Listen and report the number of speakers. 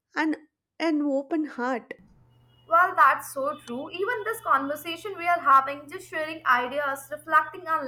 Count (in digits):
2